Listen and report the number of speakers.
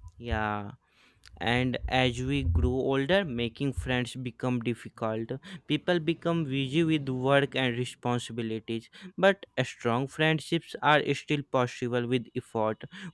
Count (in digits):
1